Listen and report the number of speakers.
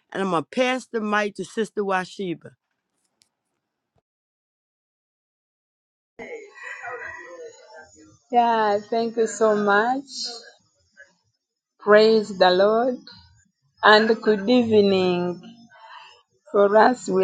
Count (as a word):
two